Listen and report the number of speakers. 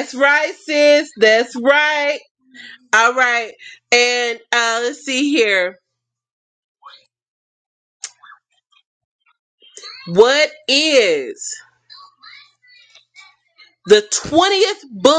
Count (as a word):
one